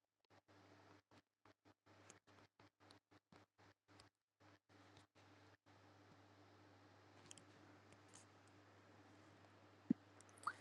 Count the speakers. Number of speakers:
0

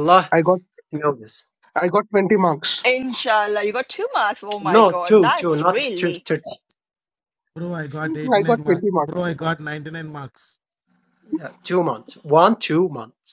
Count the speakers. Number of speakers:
4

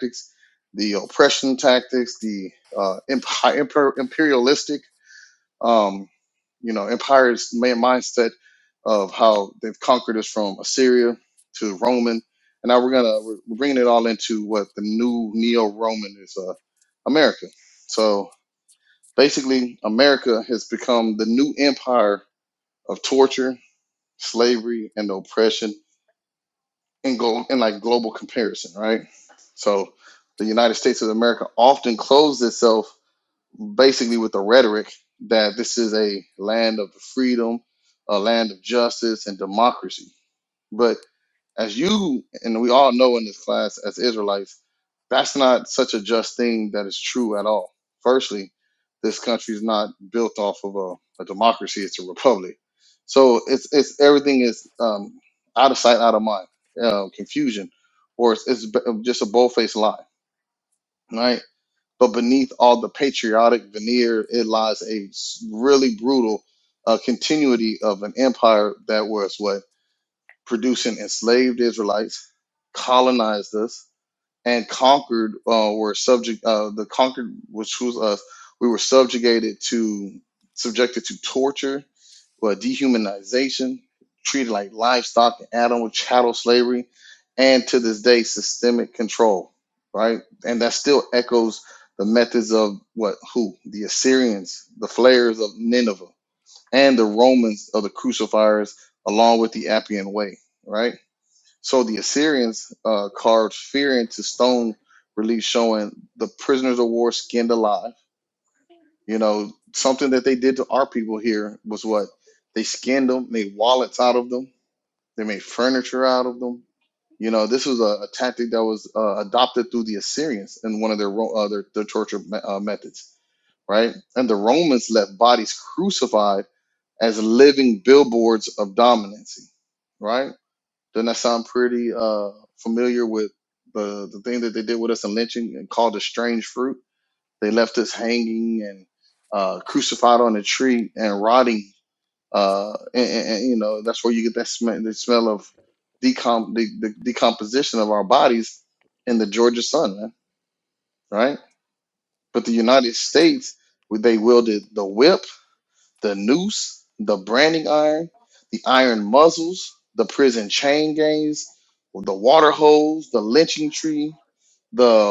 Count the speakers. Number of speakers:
1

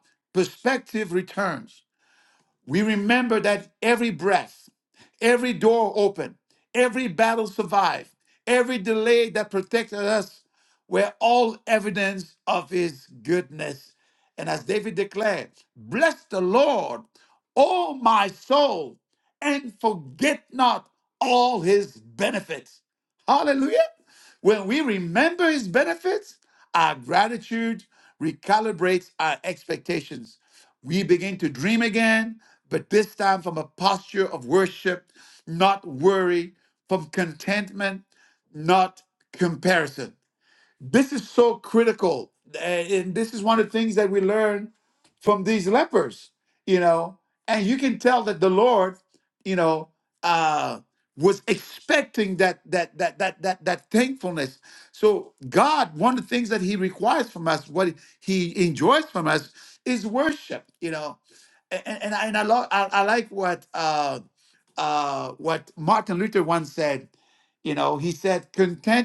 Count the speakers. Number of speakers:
1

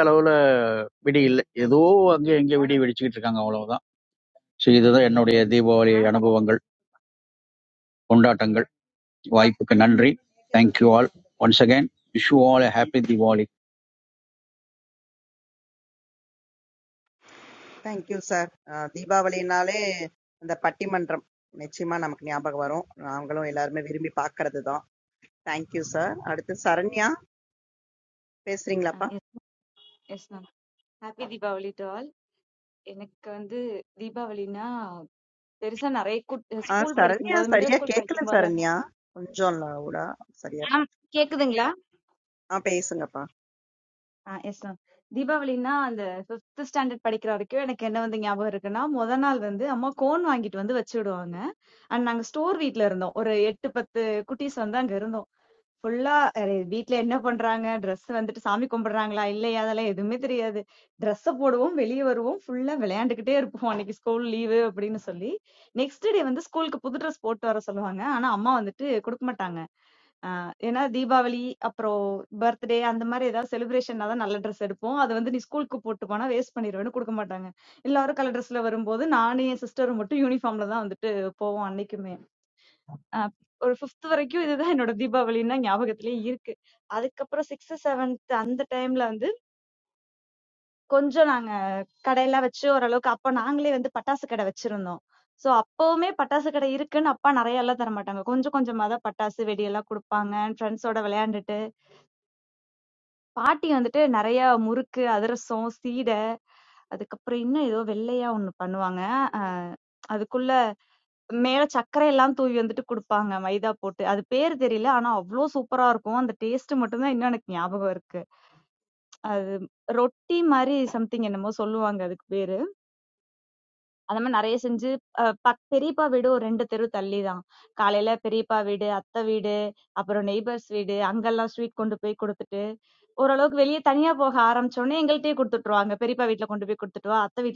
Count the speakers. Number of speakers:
3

